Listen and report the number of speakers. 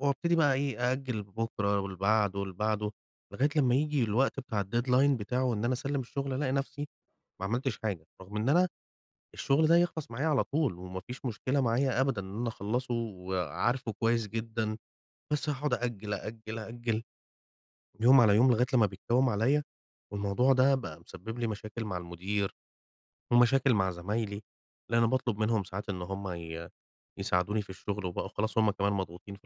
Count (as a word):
one